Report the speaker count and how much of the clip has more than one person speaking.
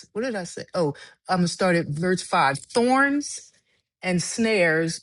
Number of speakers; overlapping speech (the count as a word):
one, no overlap